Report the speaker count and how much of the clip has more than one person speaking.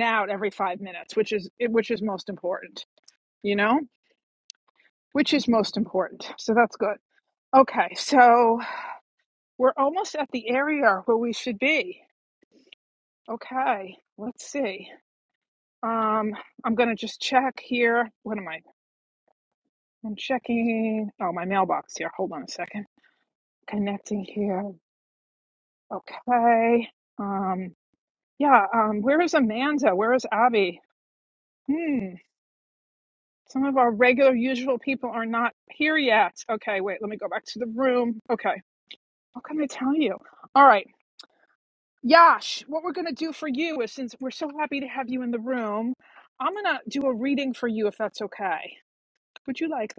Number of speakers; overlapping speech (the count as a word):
one, no overlap